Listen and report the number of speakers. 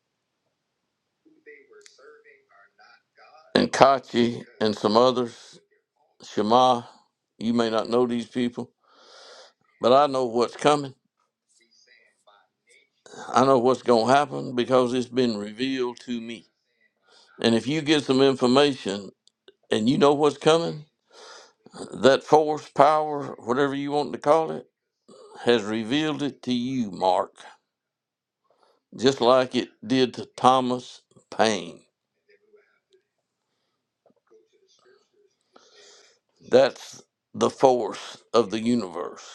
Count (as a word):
one